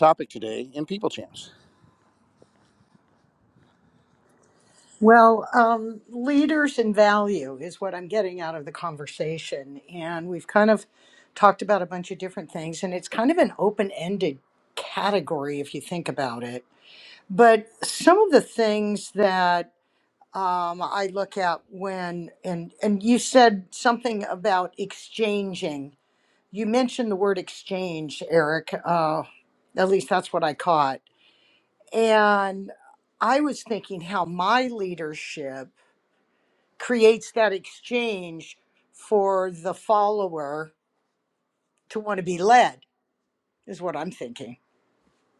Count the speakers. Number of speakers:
two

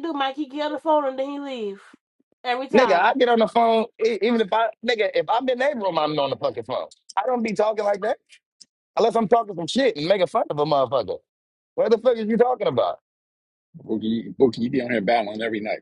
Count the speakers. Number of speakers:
three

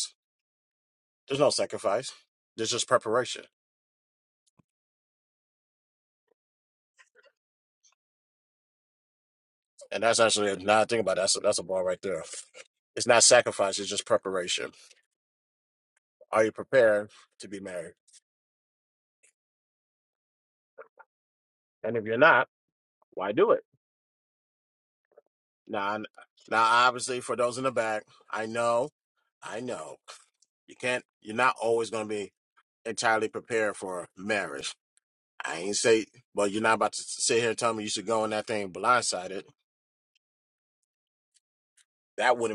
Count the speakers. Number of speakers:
one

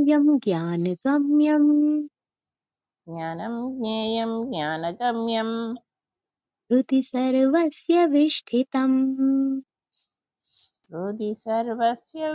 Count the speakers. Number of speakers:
two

